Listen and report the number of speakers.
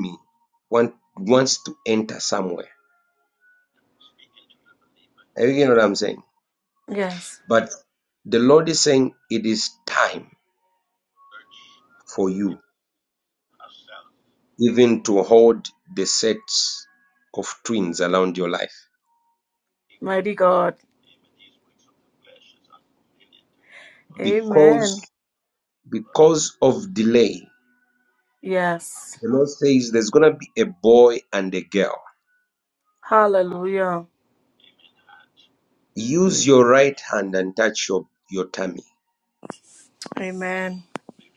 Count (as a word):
two